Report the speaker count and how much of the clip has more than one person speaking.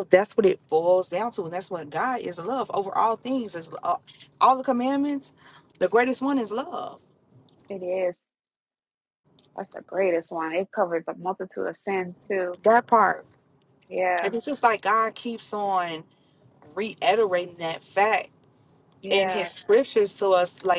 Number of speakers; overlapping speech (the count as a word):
two, about 3%